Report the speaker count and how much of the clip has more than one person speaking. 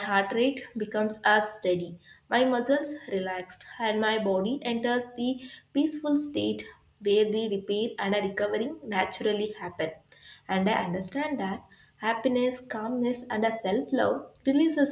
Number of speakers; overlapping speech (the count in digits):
1, no overlap